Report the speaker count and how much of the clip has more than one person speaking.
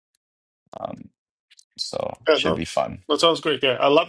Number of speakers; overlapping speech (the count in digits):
2, about 8%